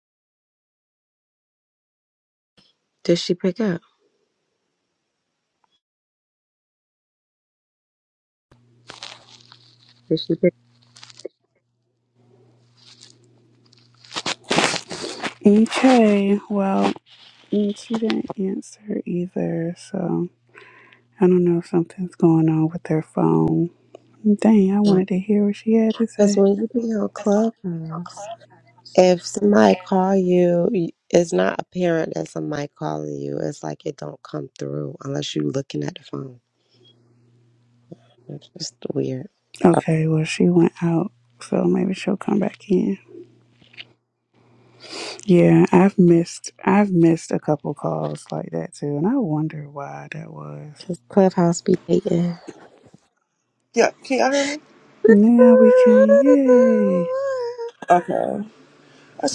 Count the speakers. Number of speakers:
3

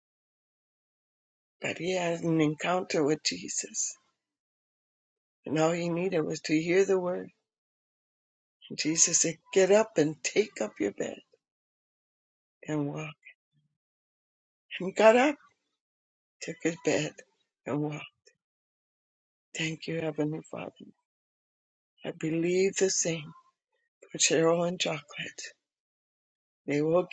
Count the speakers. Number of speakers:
1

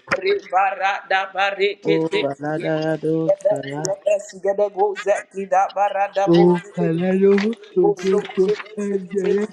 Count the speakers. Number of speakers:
2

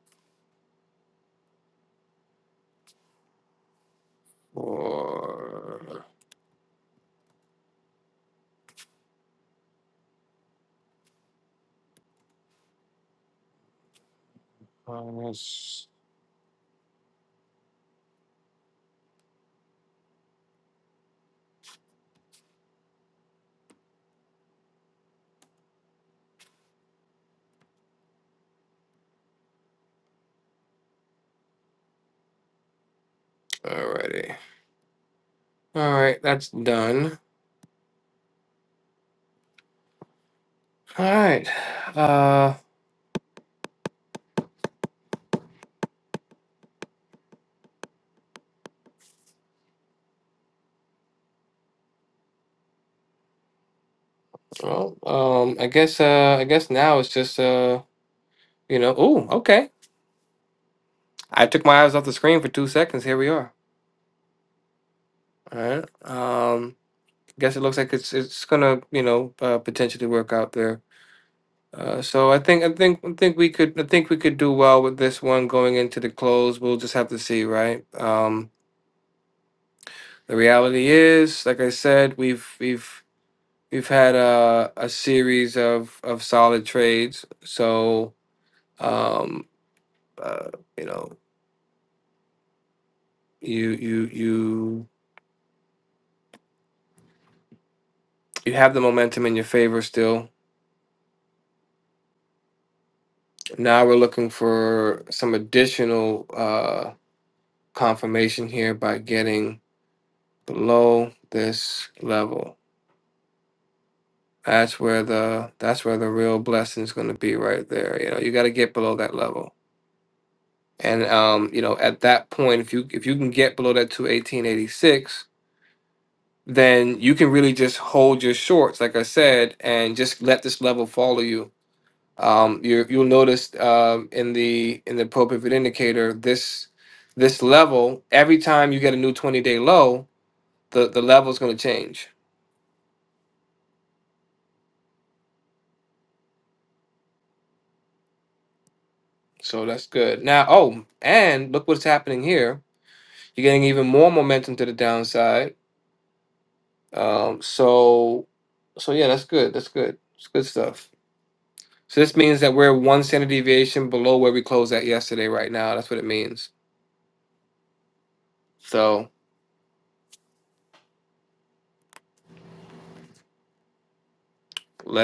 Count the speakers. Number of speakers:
1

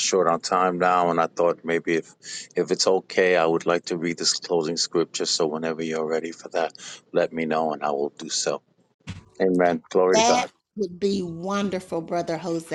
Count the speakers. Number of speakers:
2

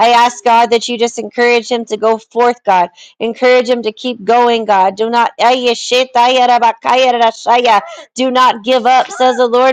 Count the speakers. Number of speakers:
1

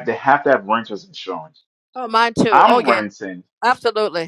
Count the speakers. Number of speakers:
2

